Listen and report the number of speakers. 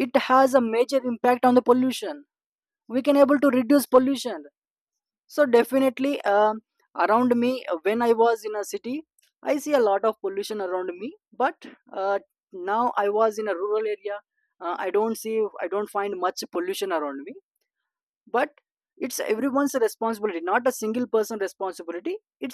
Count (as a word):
one